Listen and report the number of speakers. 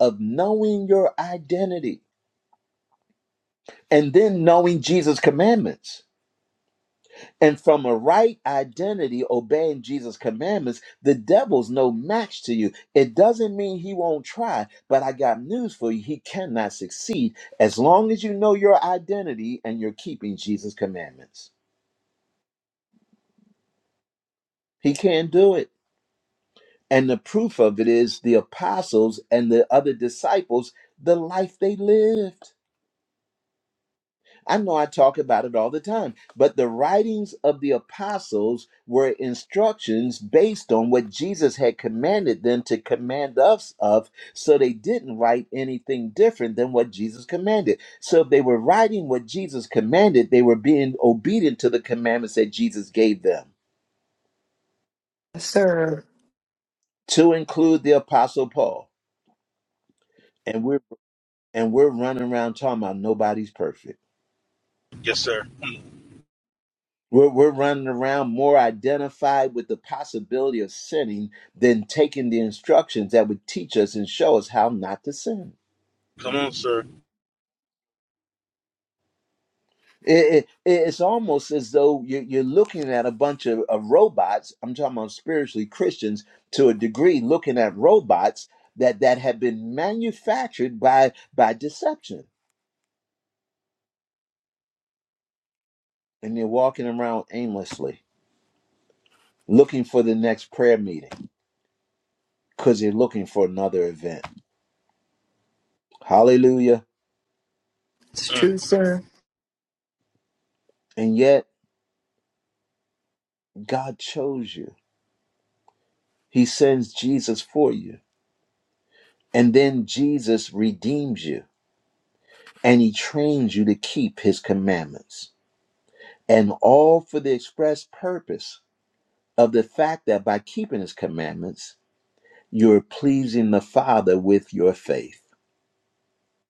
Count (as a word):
three